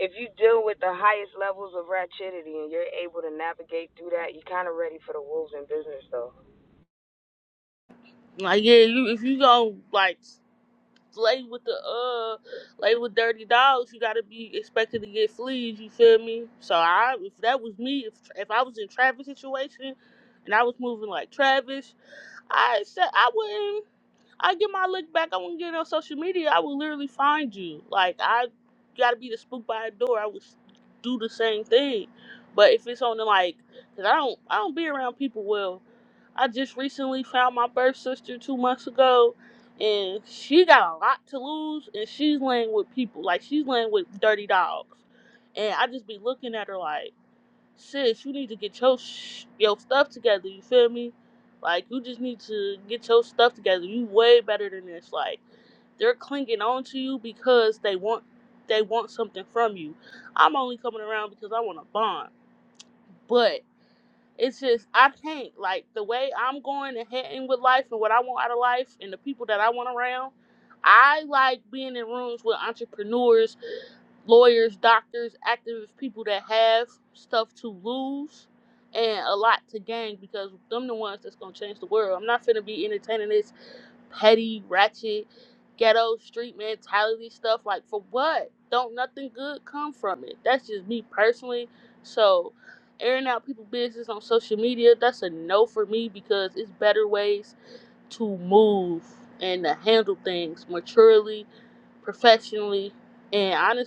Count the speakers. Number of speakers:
2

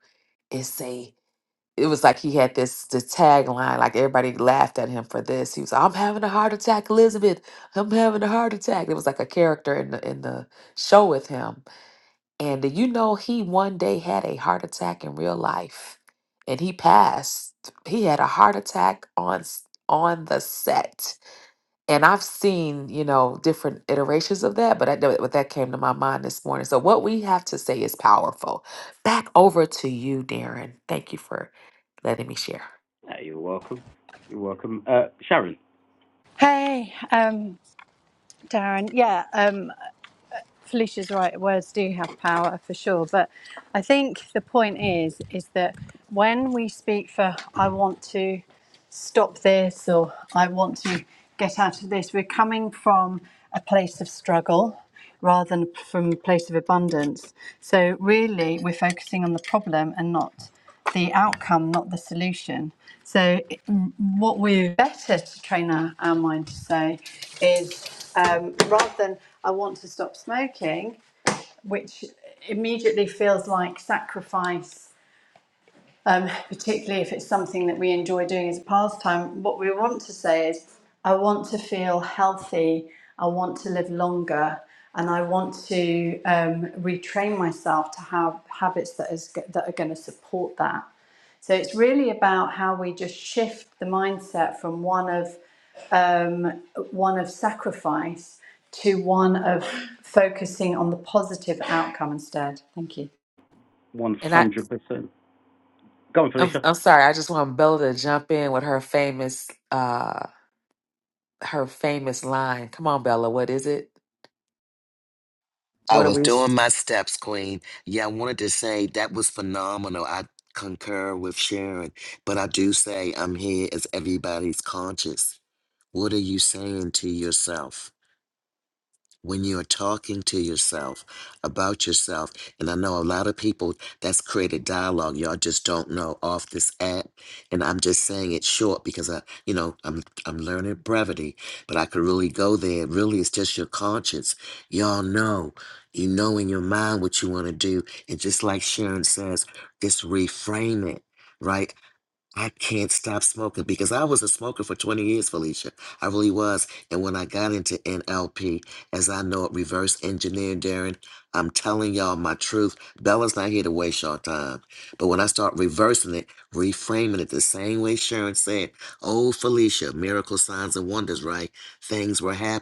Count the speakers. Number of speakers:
4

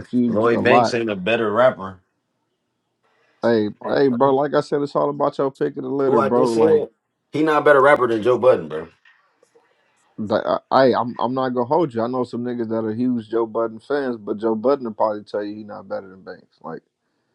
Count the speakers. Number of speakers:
2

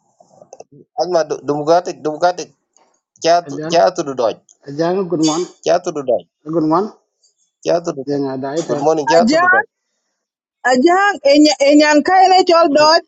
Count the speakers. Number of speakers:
3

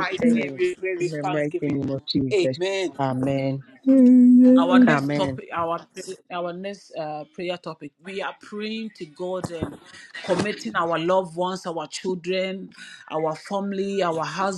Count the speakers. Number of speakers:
3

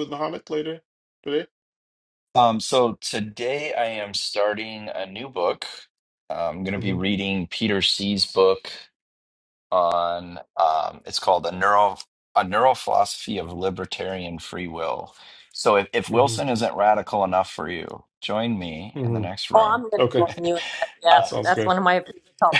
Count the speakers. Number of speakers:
3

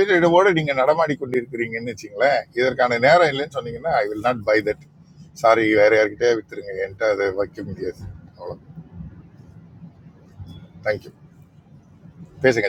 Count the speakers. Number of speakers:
1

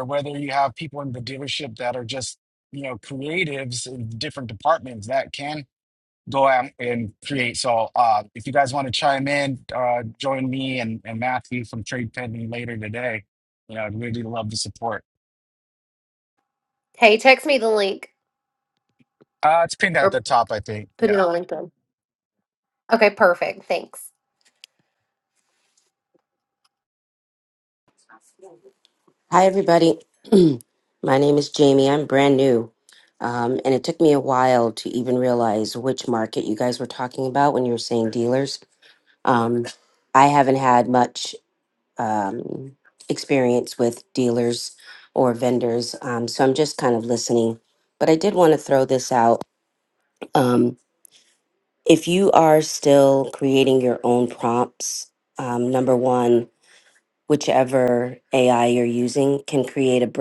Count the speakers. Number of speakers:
3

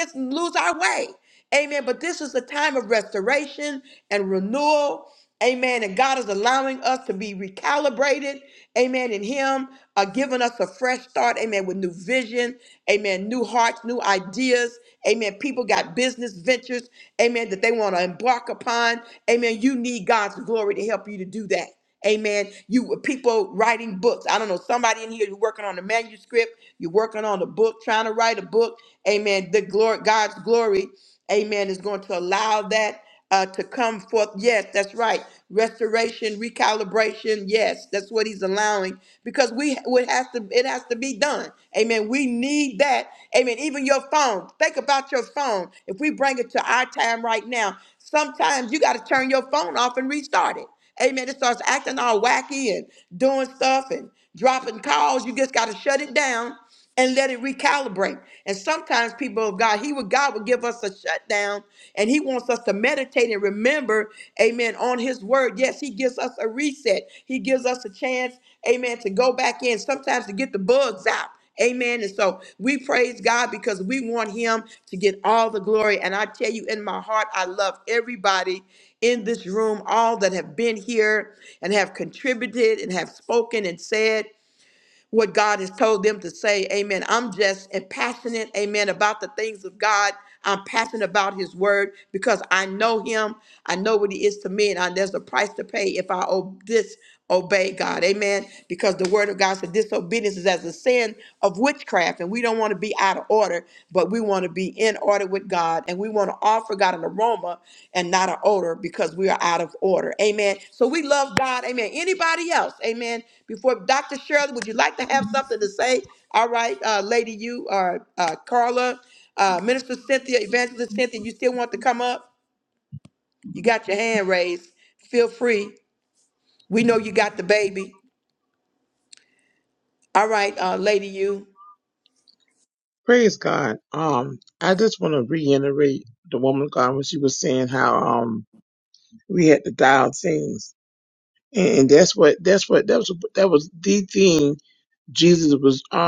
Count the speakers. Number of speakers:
2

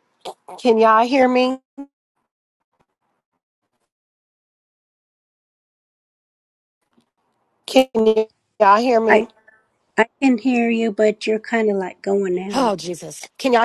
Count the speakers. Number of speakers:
2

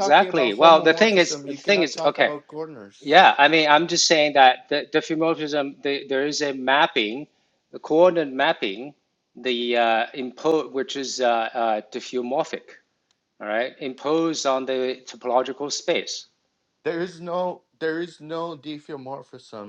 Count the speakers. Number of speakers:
2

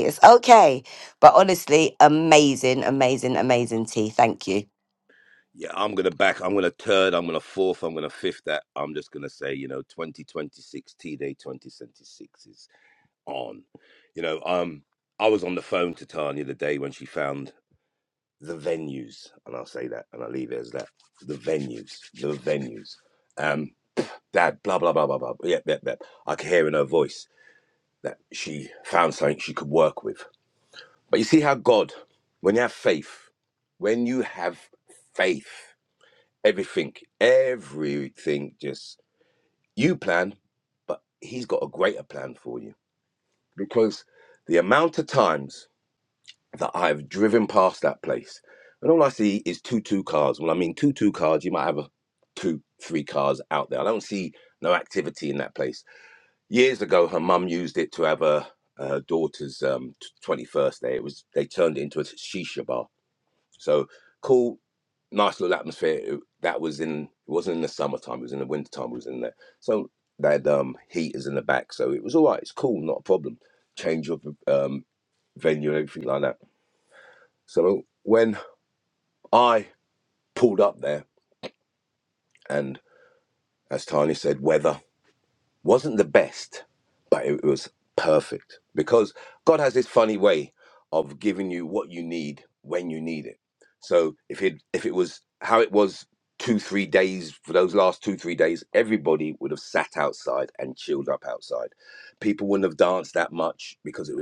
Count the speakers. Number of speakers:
2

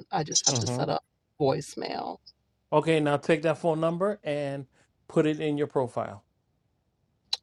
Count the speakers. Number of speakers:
2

